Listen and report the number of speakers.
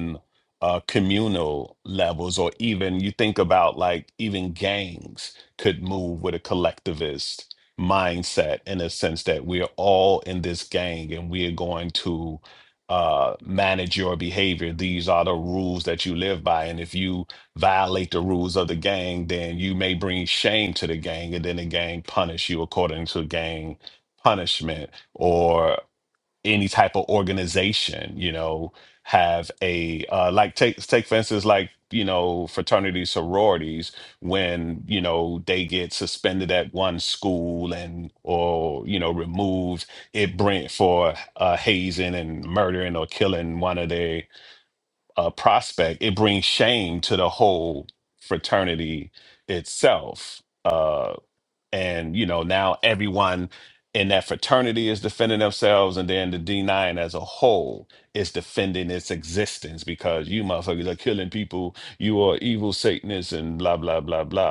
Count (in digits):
1